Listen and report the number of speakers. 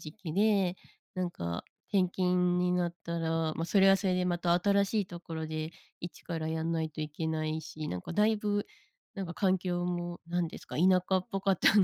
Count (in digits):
1